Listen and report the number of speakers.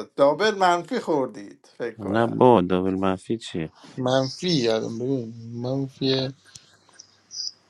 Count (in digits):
3